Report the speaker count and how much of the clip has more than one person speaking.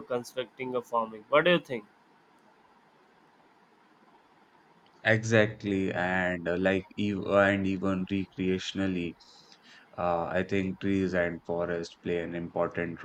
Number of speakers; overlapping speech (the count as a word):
two, no overlap